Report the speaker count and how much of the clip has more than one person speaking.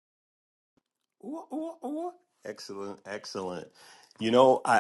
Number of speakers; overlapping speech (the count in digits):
1, no overlap